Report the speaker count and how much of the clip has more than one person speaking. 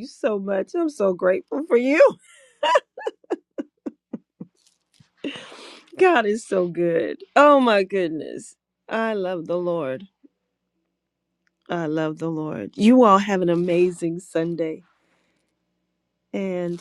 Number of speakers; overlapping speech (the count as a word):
one, no overlap